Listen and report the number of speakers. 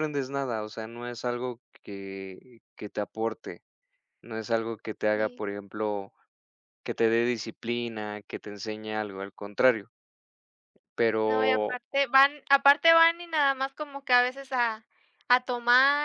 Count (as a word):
two